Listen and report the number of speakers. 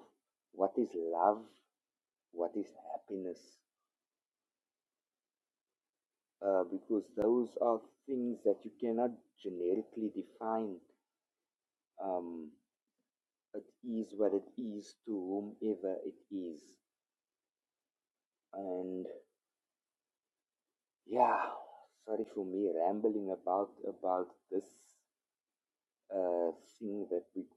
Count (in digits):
1